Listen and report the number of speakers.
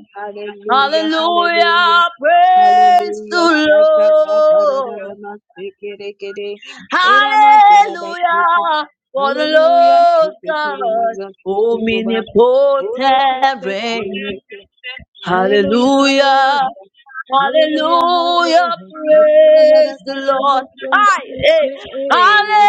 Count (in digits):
2